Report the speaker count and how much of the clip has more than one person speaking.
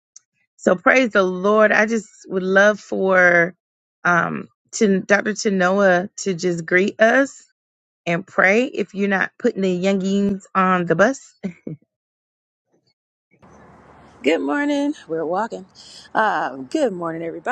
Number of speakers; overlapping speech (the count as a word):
two, no overlap